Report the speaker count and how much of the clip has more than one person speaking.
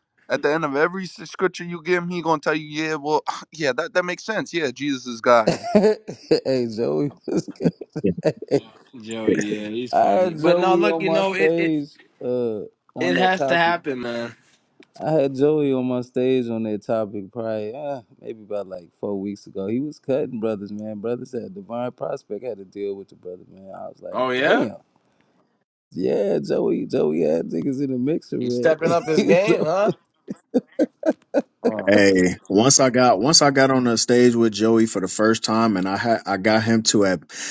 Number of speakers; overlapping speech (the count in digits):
4, about 12%